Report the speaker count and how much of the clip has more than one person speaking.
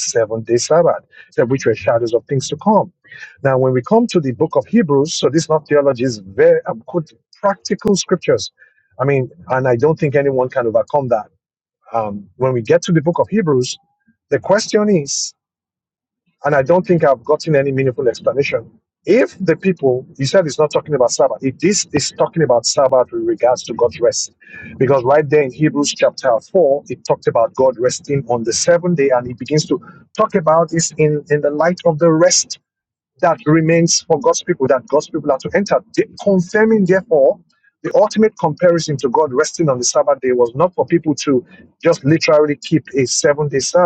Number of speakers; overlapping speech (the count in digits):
1, no overlap